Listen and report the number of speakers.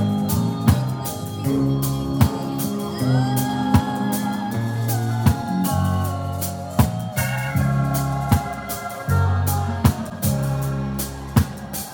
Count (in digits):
0